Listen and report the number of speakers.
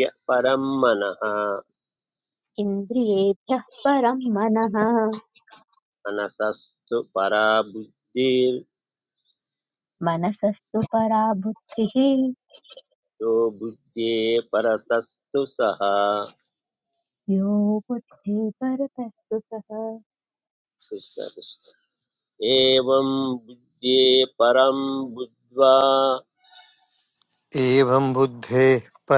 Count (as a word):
three